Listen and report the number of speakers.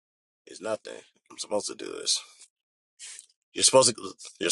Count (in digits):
1